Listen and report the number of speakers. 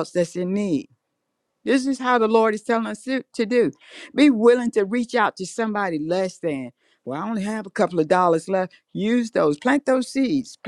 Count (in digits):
1